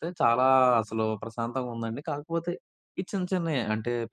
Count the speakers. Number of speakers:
one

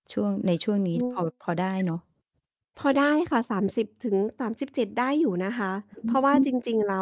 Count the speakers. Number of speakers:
two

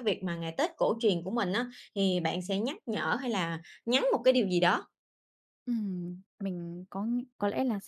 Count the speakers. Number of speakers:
two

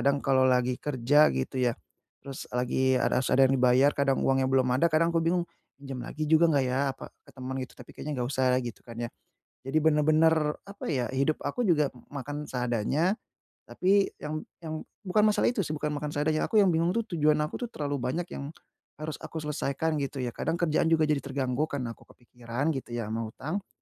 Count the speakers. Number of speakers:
one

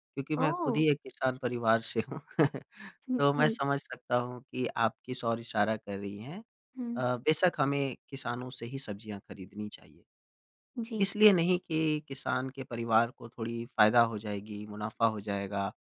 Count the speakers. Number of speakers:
two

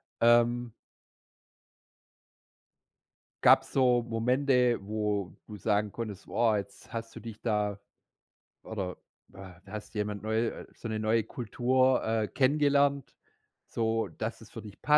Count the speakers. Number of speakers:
one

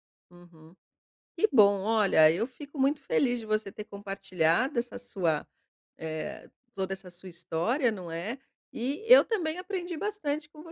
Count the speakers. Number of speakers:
one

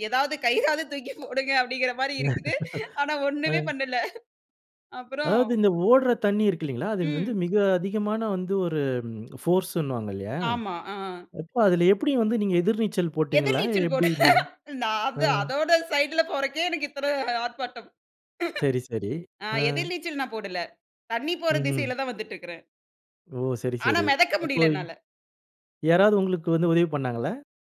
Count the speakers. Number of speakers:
two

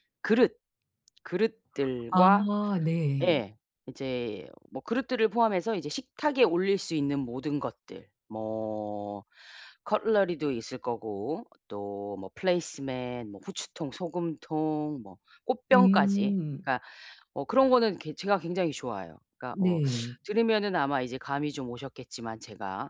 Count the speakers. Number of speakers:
two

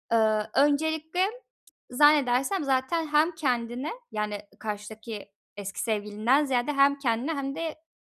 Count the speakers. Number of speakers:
one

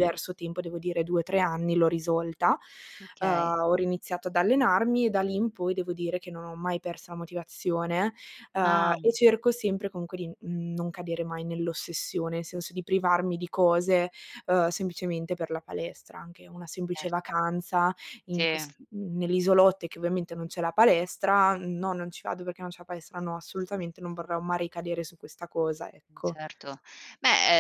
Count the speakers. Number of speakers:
two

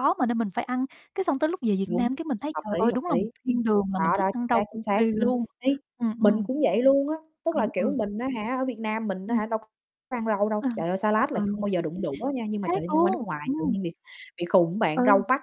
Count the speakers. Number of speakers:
two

